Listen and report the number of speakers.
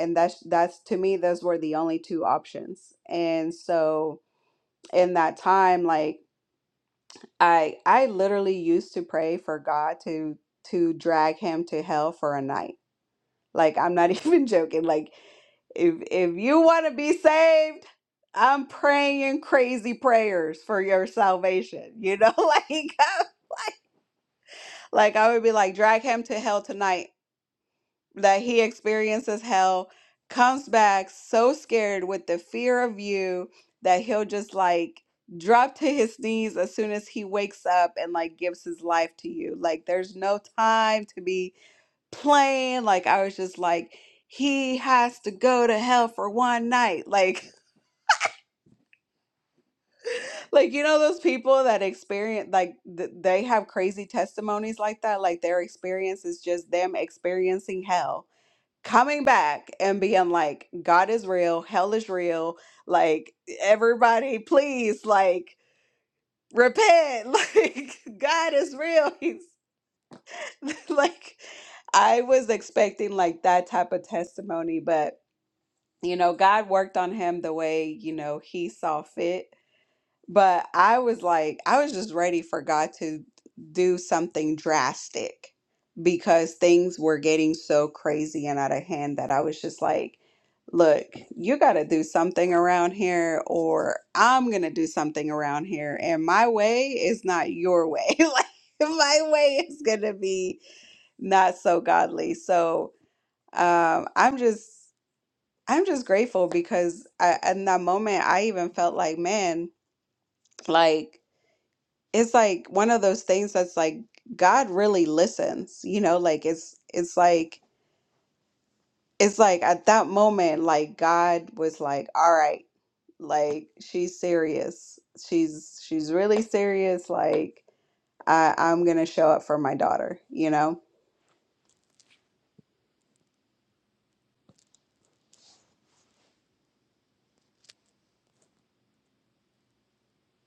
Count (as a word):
one